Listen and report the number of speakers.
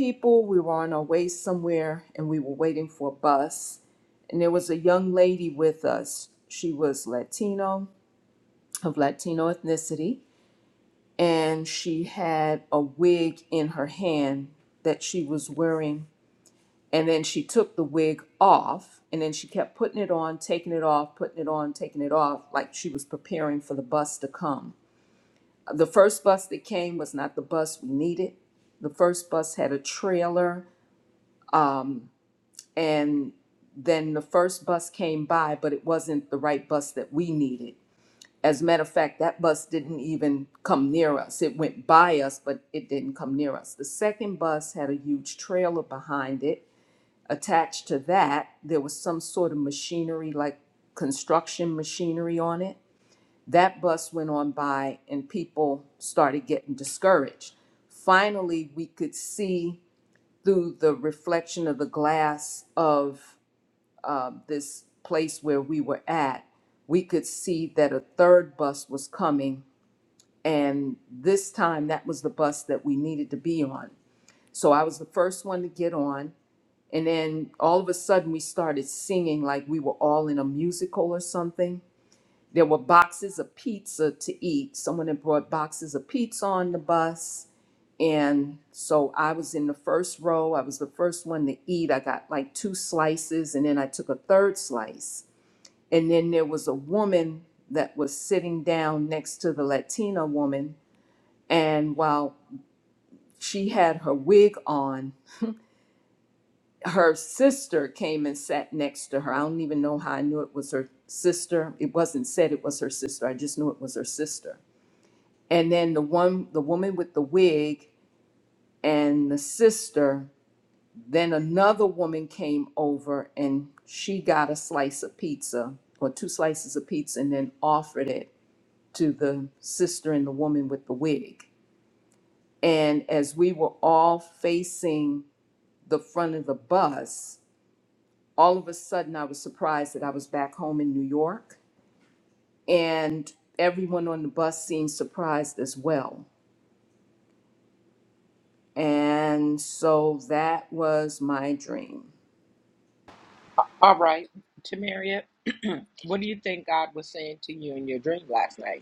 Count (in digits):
2